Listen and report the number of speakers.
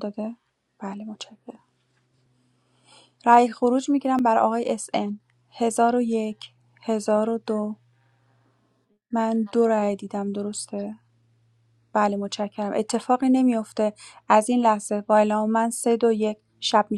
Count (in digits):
1